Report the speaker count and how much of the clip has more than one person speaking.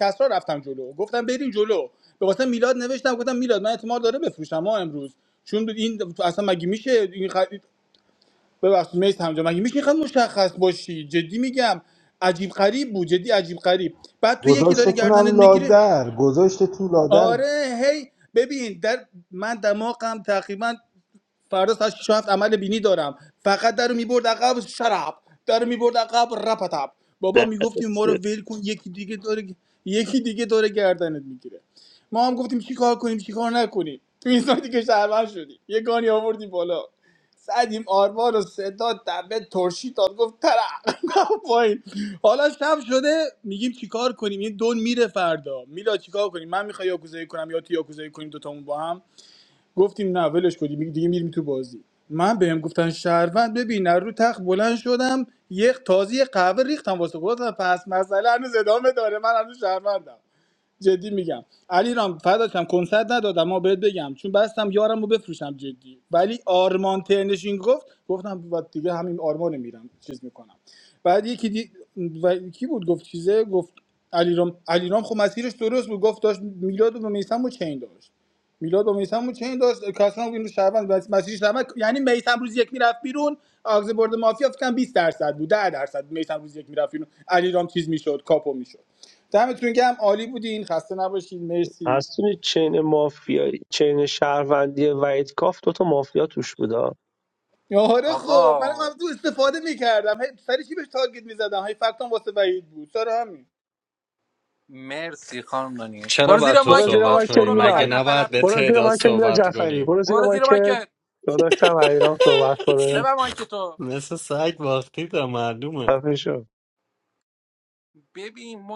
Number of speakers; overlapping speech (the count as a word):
five, about 7%